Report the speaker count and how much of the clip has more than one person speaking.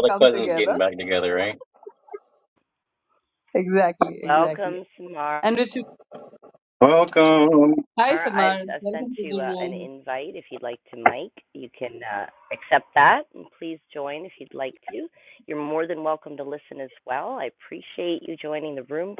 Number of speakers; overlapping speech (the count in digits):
3, about 15%